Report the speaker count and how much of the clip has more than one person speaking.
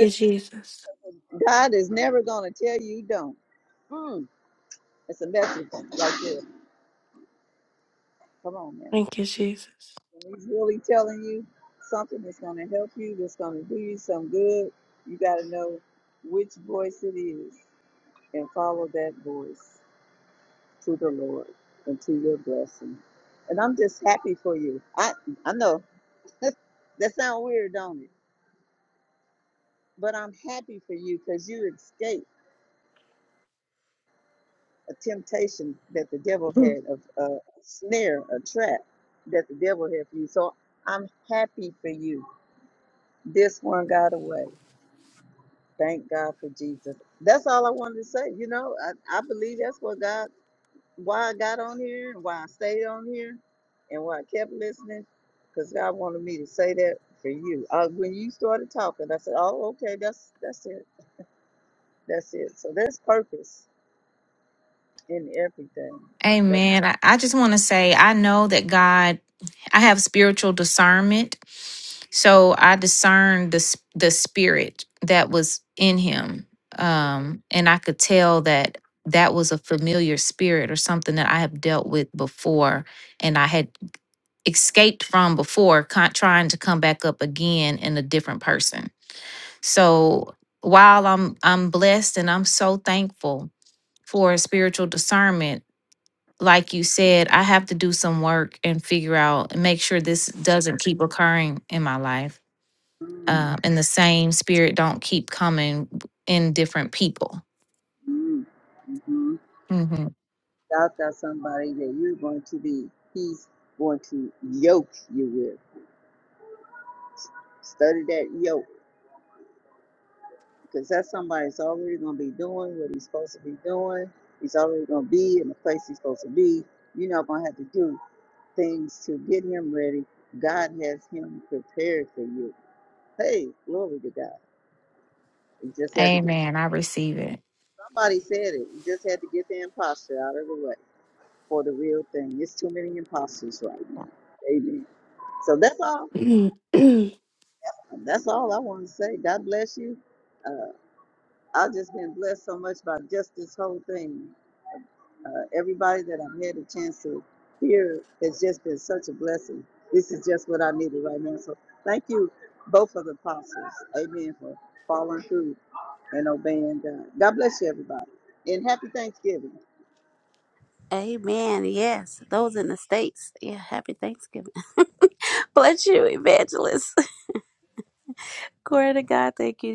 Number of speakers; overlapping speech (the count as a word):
four, about 1%